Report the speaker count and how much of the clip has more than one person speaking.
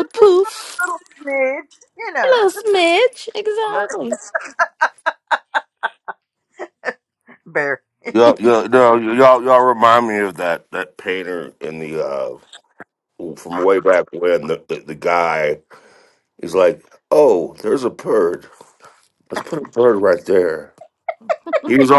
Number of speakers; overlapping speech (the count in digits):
3, about 5%